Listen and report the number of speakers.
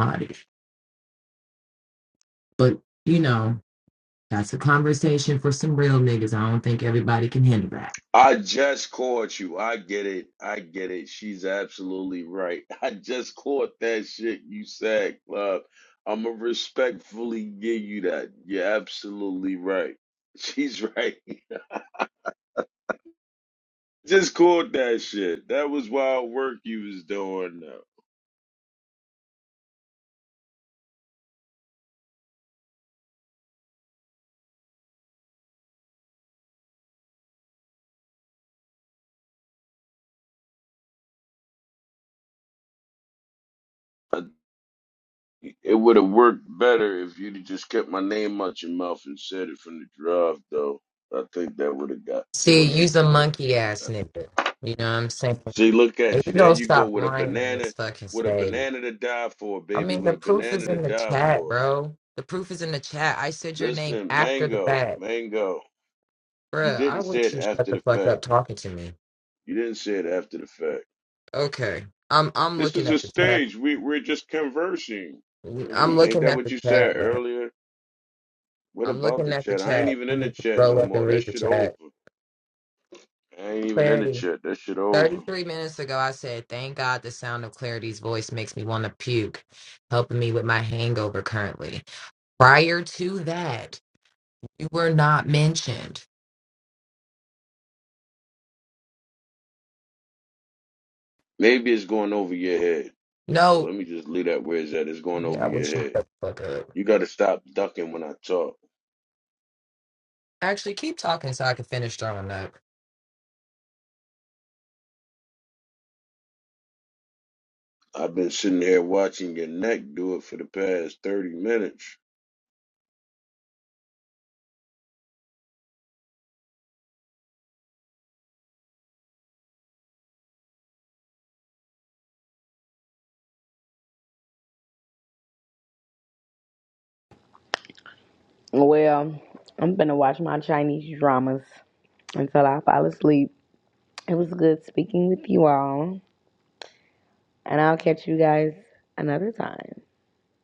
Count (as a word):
three